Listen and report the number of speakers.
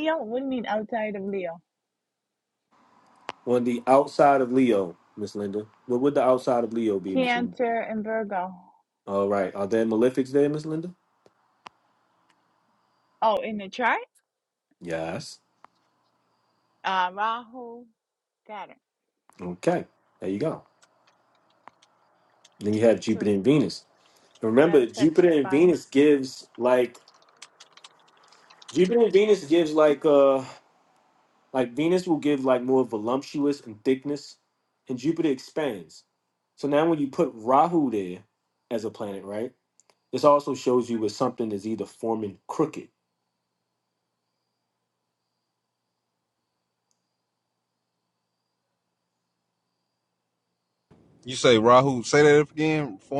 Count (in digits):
3